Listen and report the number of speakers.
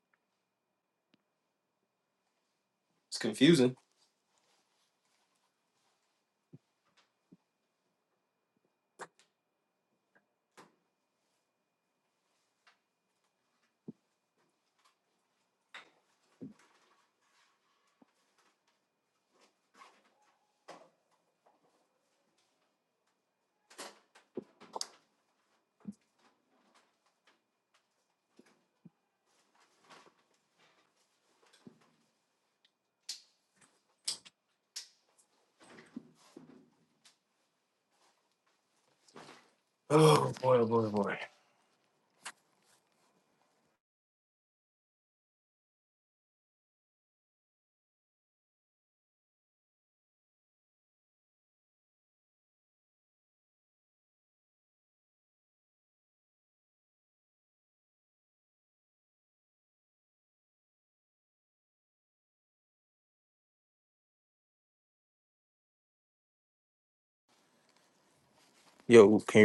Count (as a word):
one